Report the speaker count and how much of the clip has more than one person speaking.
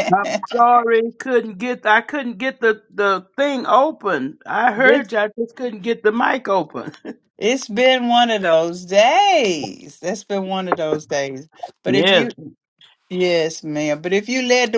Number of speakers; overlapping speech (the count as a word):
two, about 5%